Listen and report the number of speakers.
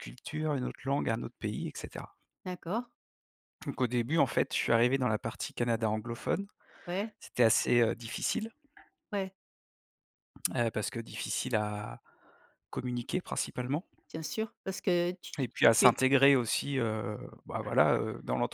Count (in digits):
2